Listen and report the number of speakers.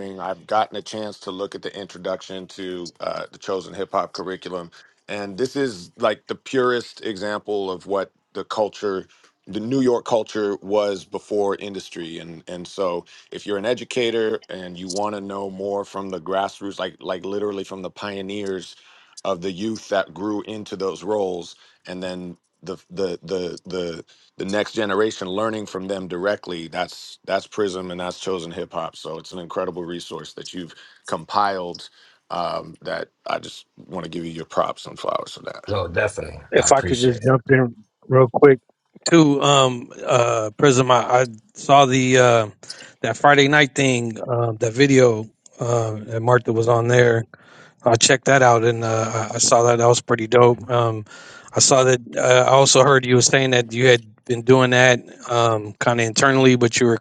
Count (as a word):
three